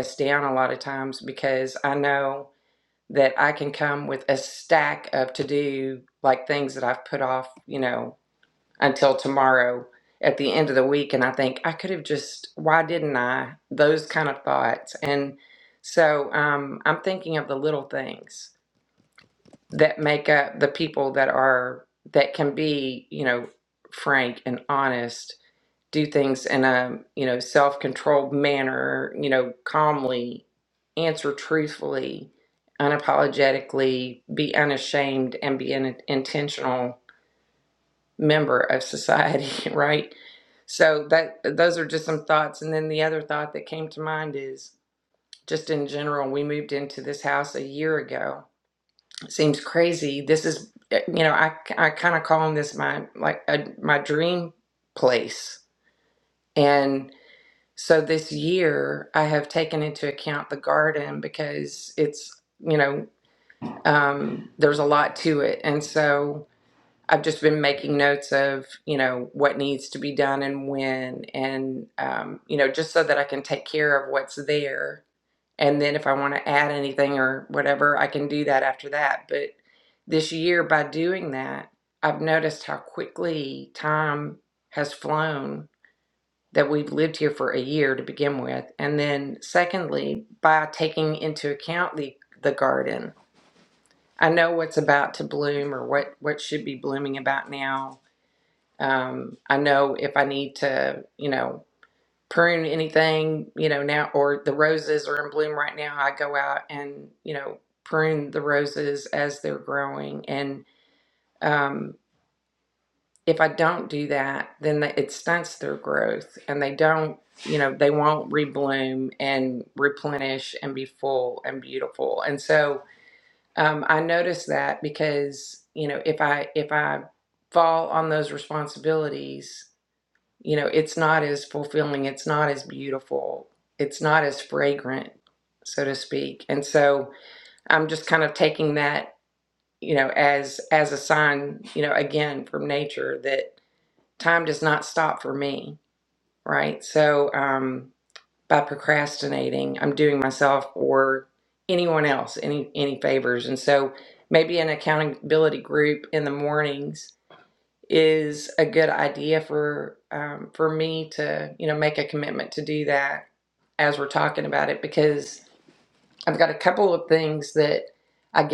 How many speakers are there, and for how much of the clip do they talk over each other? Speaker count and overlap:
one, no overlap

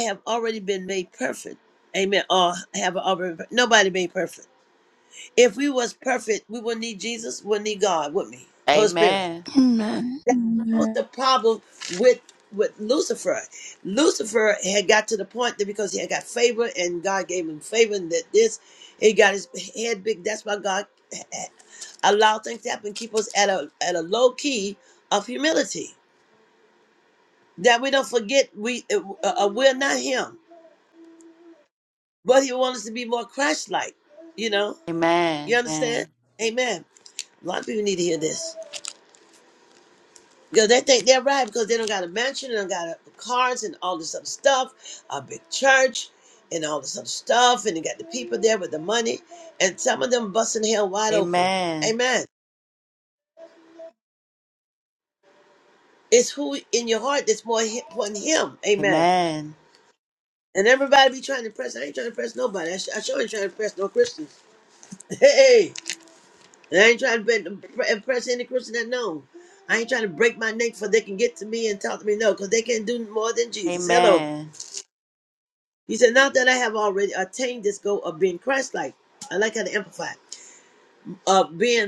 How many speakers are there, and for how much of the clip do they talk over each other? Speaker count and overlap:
three, about 3%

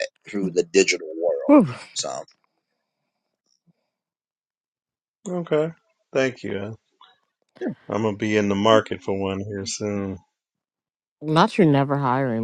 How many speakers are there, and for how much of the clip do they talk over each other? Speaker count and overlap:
three, no overlap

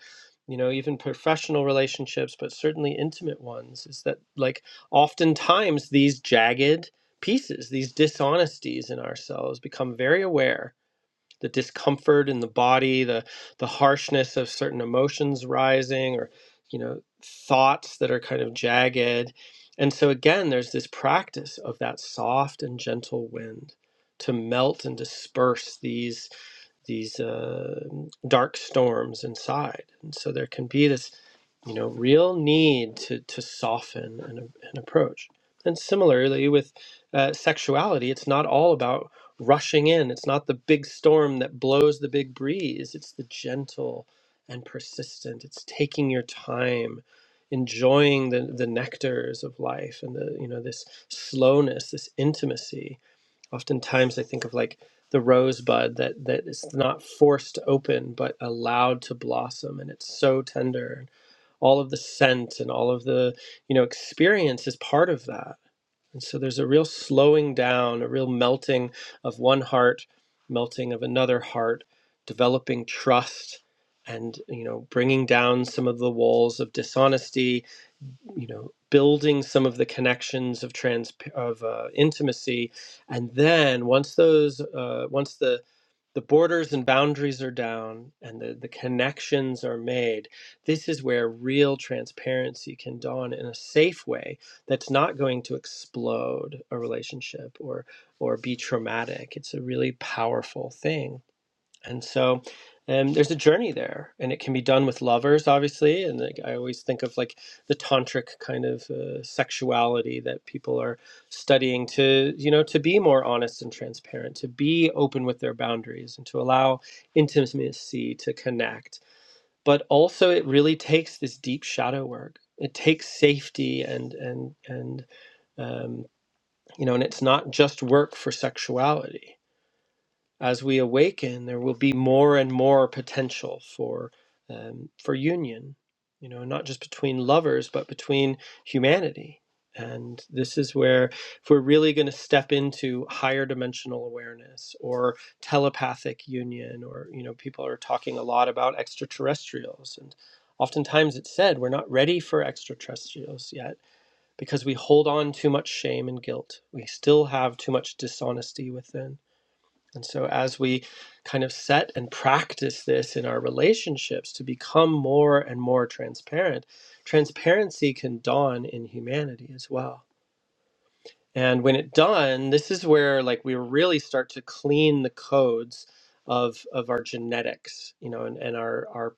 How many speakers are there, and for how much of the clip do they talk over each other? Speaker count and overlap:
one, no overlap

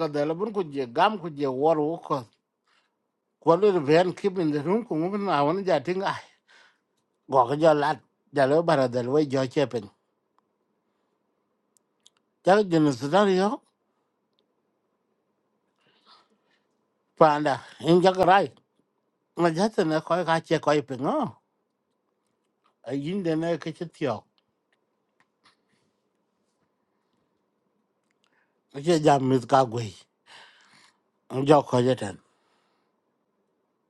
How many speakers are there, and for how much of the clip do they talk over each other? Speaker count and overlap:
one, no overlap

